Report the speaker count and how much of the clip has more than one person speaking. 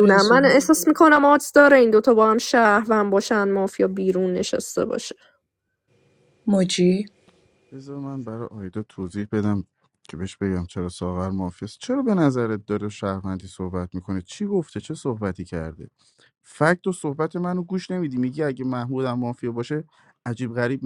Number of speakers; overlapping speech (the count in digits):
3, about 2%